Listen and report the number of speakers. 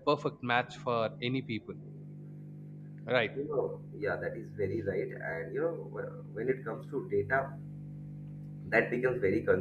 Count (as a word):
two